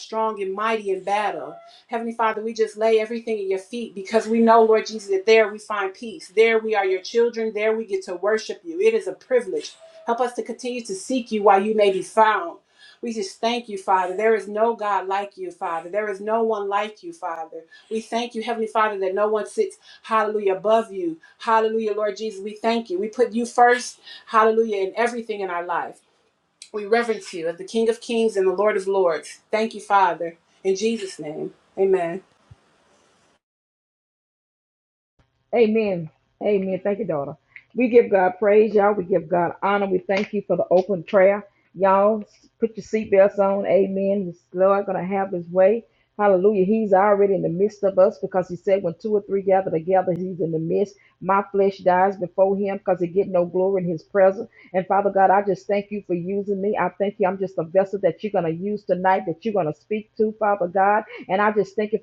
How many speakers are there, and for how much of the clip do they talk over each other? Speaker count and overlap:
2, no overlap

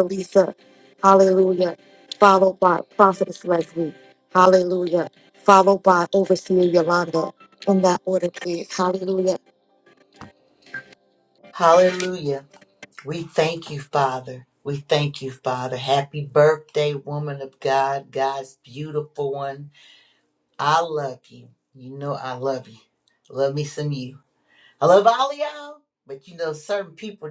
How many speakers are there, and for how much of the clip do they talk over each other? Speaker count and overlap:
2, no overlap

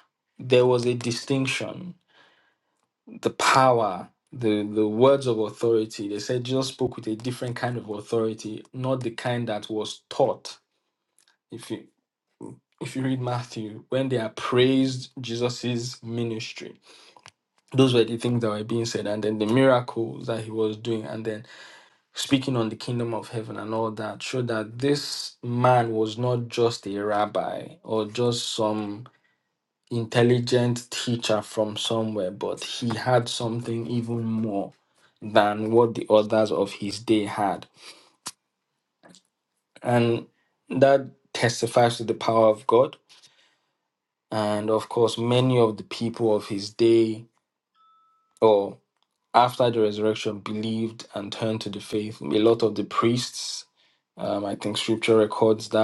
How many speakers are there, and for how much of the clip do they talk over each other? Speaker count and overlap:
1, no overlap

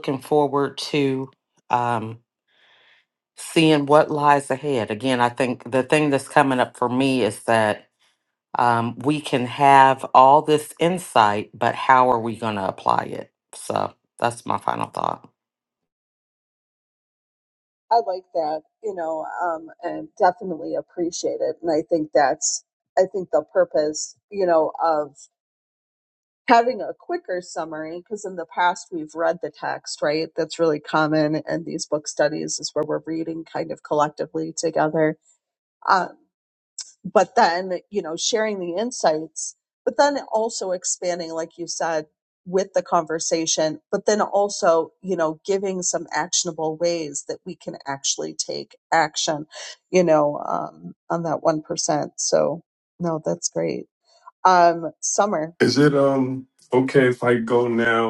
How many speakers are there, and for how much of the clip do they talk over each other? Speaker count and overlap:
3, no overlap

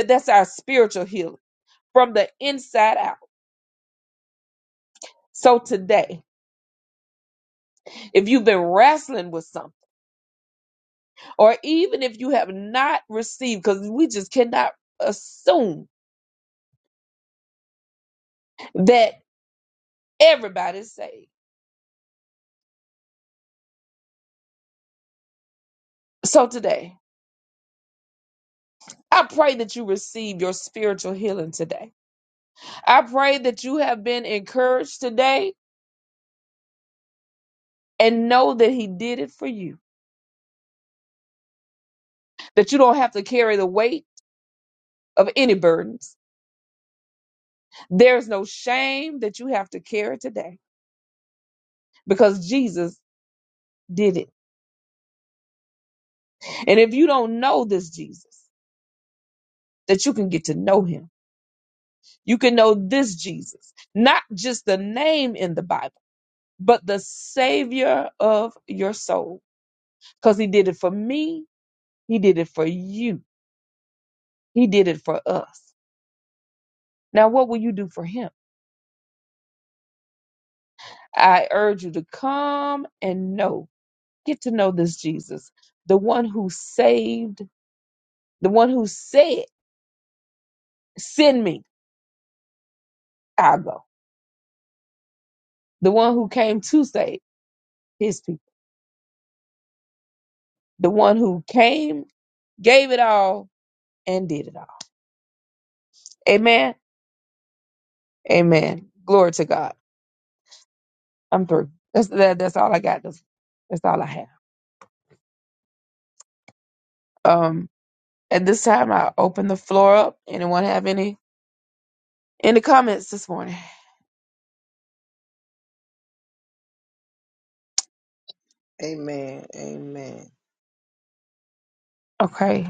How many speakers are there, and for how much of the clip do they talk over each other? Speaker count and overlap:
2, no overlap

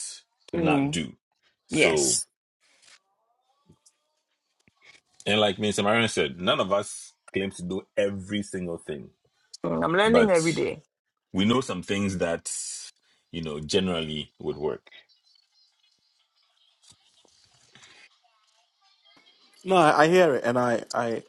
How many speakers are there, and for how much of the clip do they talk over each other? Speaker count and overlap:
3, about 6%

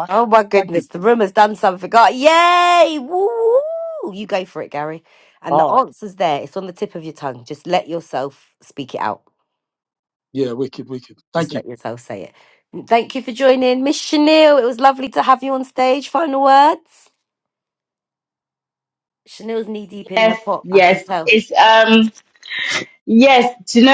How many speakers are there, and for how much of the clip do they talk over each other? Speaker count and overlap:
3, about 8%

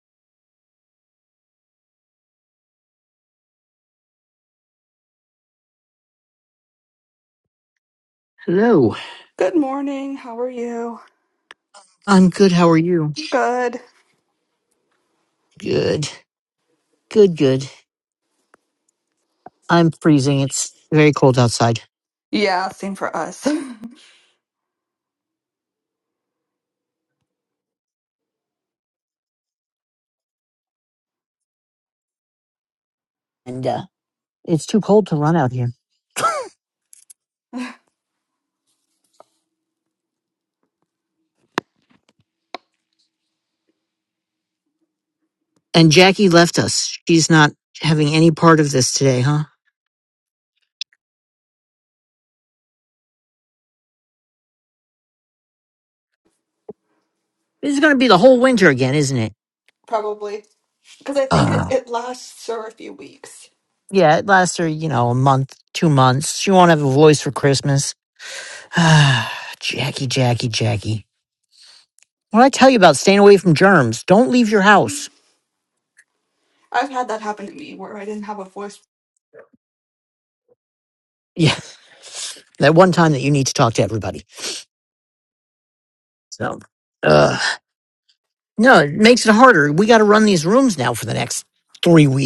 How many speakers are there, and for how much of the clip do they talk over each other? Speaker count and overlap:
2, under 1%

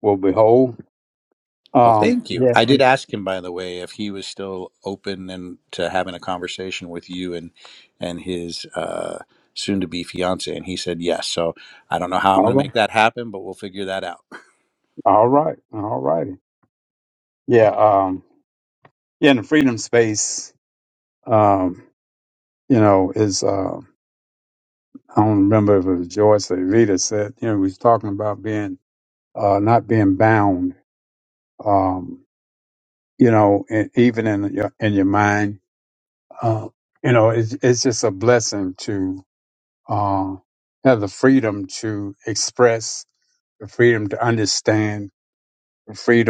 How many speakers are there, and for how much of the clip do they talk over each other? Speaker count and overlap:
2, about 3%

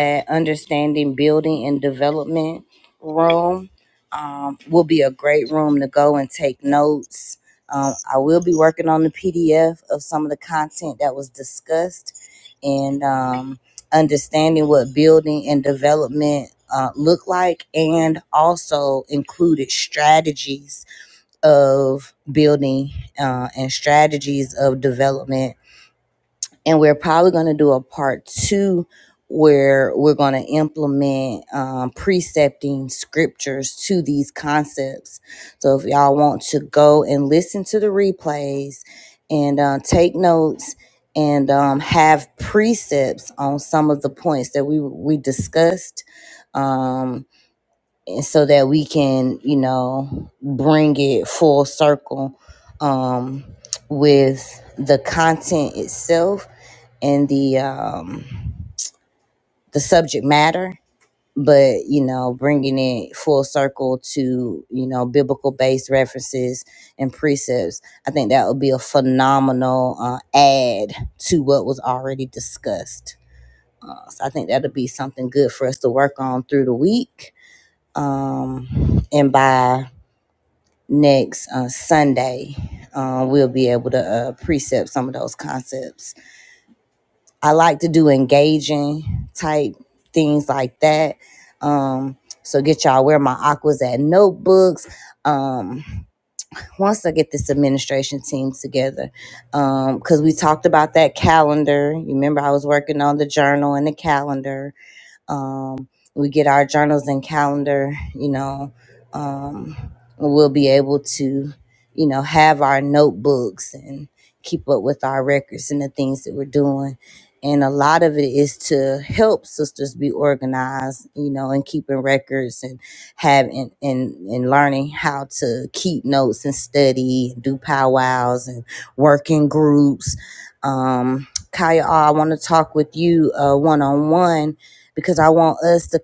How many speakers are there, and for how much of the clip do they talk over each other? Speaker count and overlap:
1, no overlap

